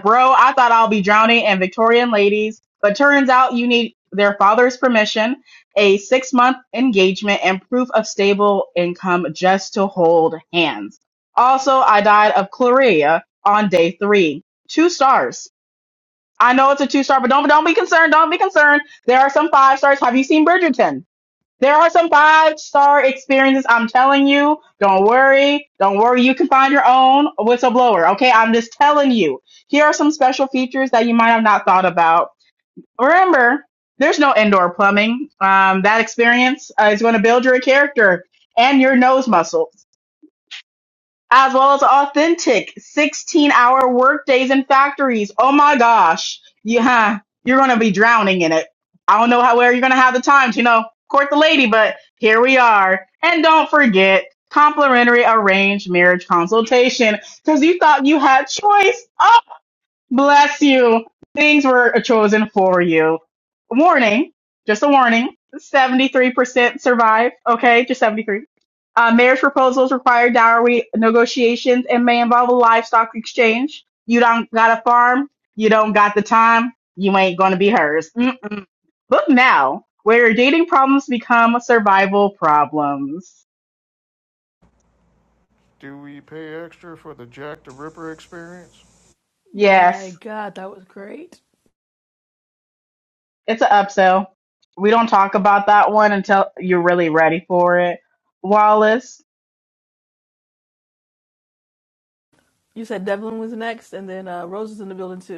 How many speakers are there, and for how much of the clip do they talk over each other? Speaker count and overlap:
three, under 1%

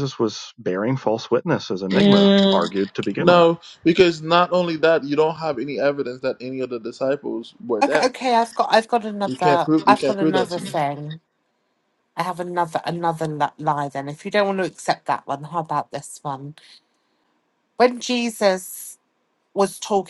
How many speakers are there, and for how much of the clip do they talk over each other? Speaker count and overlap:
three, about 14%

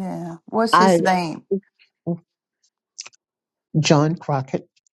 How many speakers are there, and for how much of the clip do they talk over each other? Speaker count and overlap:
two, about 6%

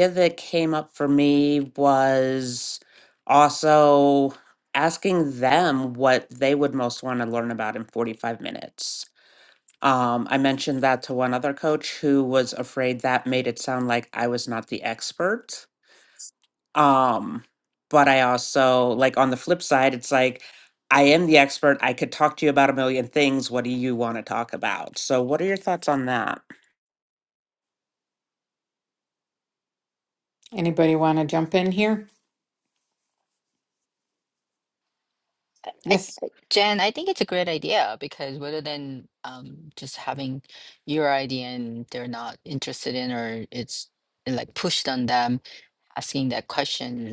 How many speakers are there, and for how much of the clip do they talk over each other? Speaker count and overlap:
three, under 1%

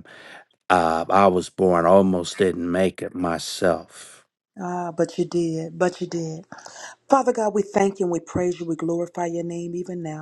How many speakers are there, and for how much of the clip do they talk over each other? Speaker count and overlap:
two, no overlap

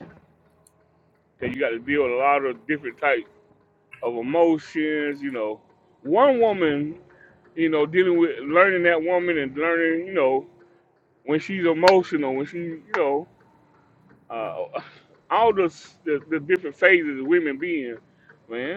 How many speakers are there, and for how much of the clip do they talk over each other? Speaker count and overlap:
one, no overlap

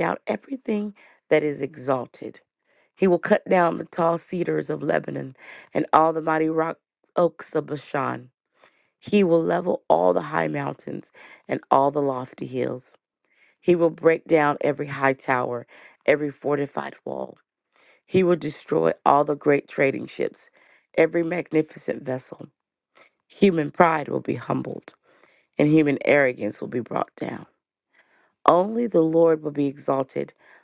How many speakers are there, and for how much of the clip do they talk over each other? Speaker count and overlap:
one, no overlap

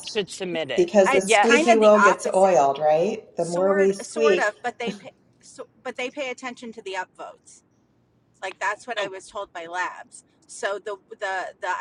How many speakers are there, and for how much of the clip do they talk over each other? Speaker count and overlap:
three, about 23%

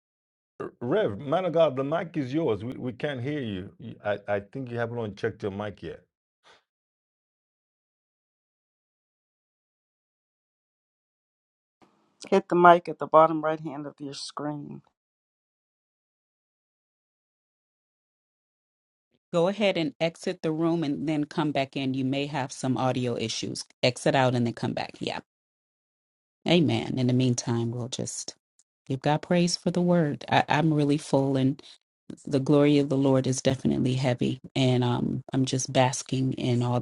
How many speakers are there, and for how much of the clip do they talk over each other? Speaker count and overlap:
three, no overlap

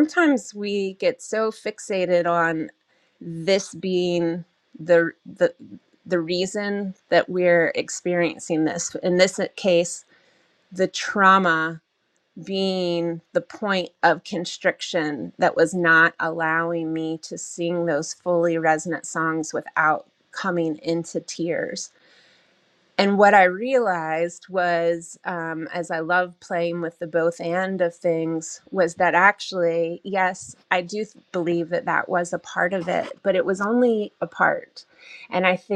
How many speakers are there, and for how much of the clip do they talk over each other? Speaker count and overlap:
one, no overlap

